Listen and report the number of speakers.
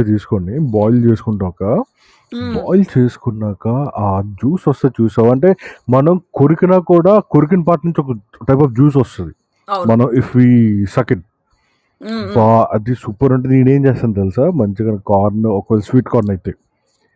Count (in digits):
2